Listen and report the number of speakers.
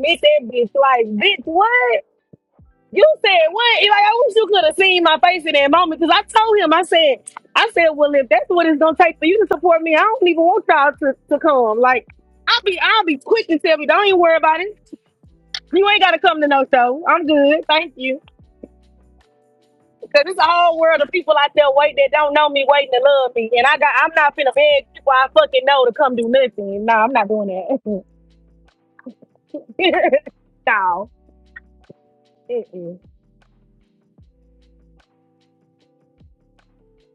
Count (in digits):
1